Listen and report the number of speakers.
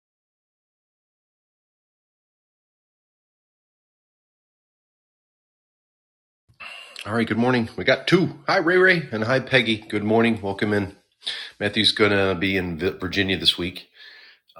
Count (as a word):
one